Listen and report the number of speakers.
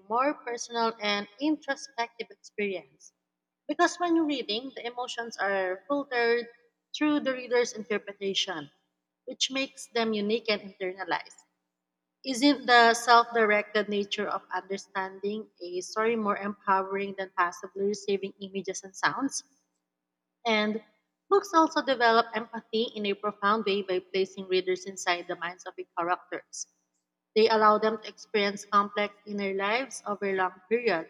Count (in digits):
1